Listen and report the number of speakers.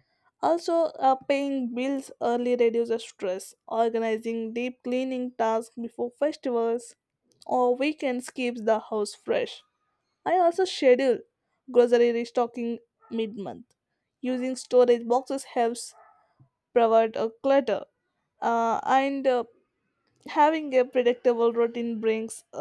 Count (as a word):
one